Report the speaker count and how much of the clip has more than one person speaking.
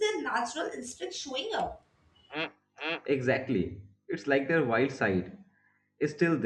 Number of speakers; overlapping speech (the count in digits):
2, no overlap